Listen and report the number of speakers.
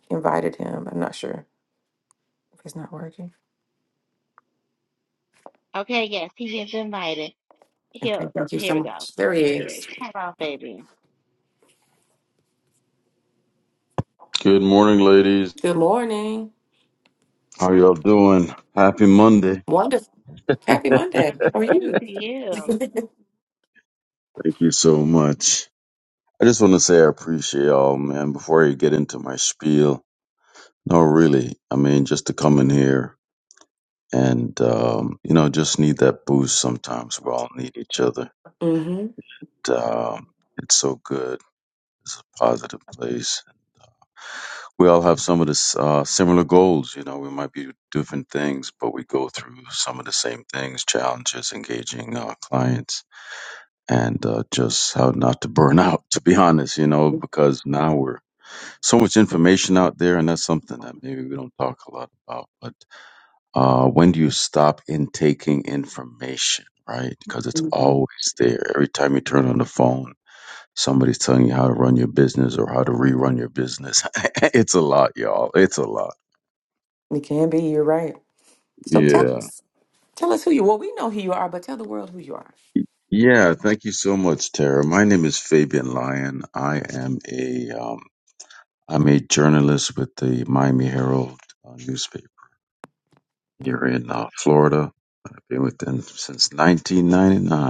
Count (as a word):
three